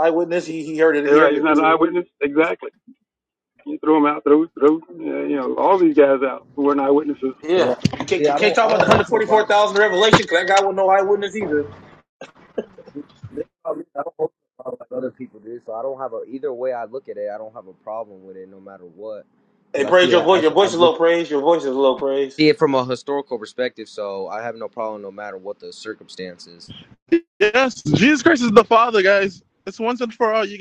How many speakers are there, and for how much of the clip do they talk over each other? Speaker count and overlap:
4, about 11%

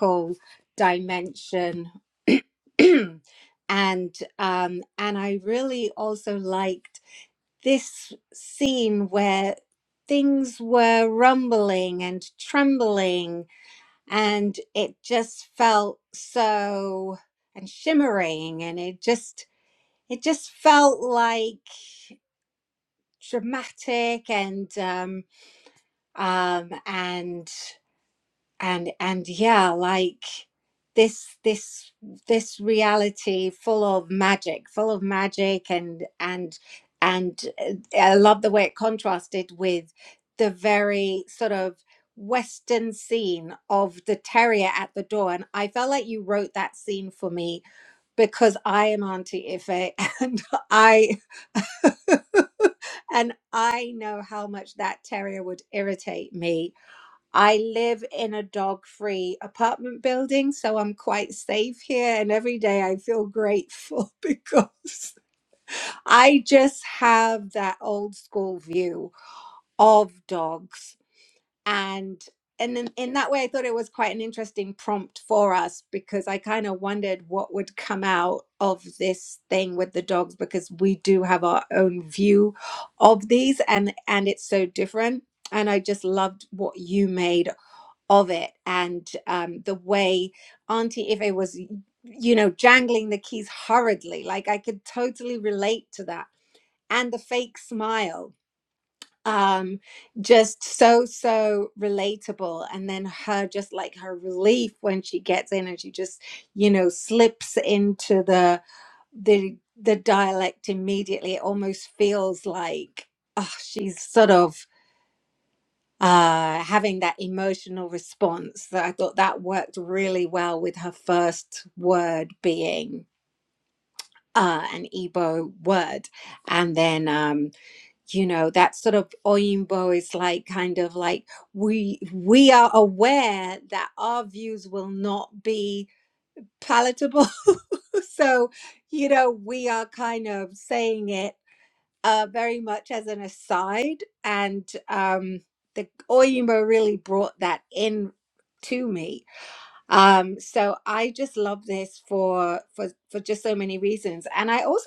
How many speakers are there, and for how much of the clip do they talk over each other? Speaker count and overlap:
1, no overlap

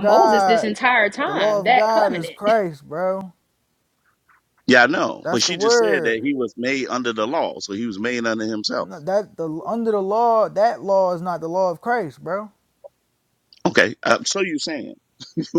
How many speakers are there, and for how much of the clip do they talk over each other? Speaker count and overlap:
3, about 20%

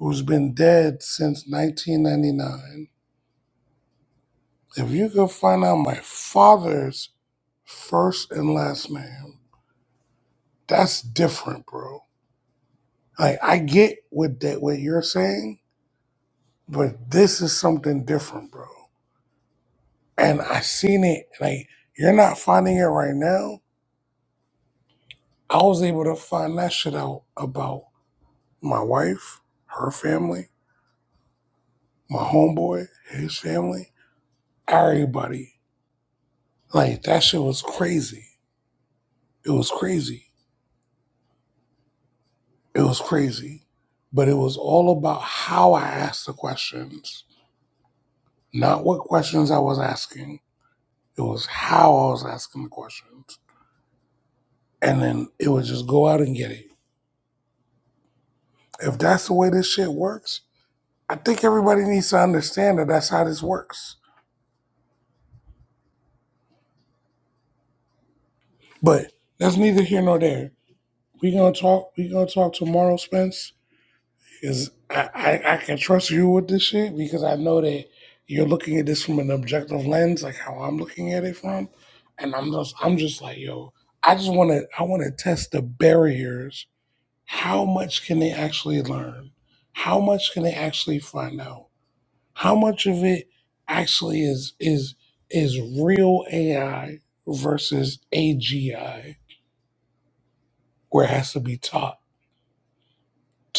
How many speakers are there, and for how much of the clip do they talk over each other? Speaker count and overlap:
1, no overlap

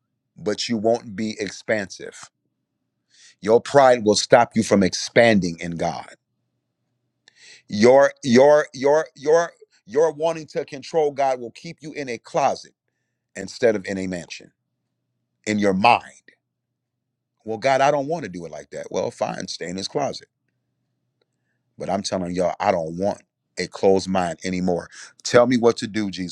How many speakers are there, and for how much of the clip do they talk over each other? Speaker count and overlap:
1, no overlap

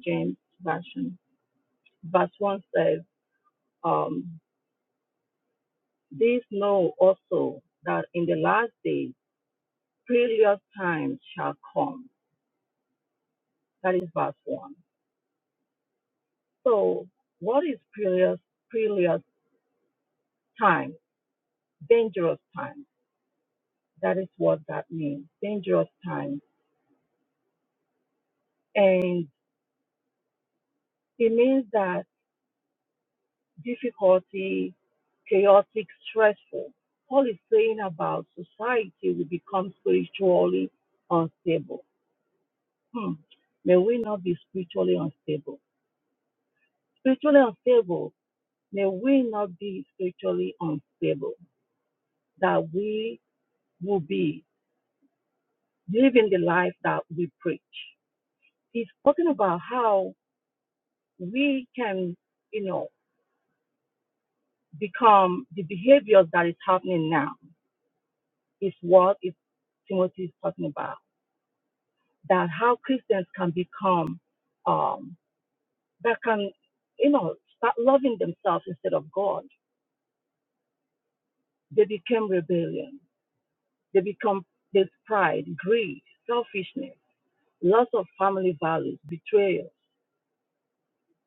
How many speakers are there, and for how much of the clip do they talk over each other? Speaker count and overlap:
1, no overlap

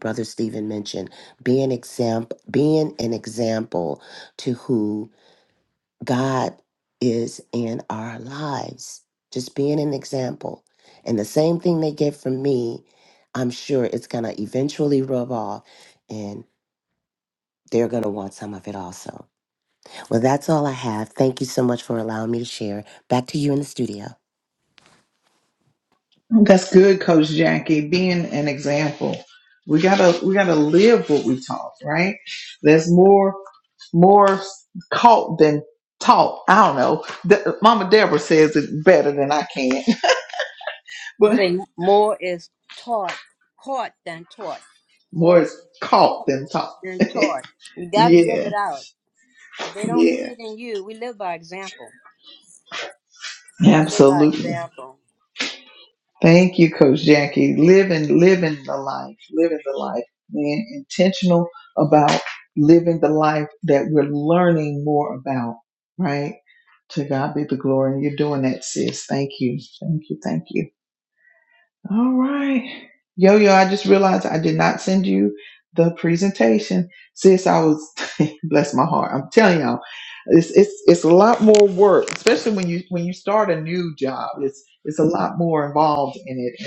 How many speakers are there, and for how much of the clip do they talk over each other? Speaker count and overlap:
3, about 3%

